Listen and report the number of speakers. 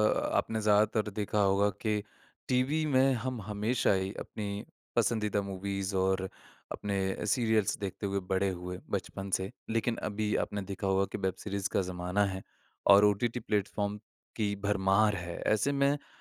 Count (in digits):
1